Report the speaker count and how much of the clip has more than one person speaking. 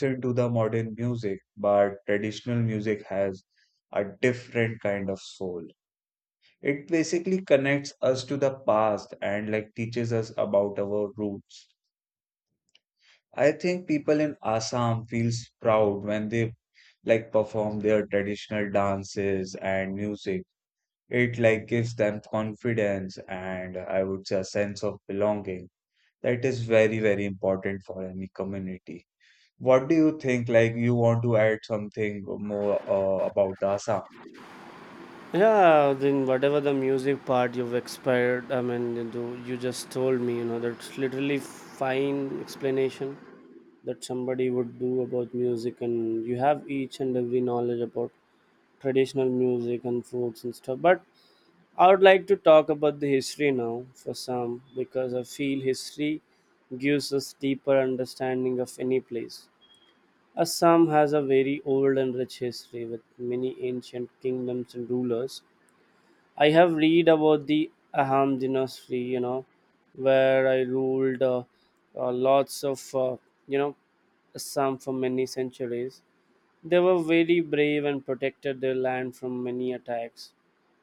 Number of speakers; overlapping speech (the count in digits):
2, no overlap